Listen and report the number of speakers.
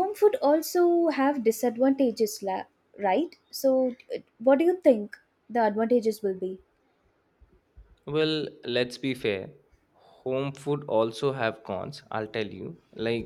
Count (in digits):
2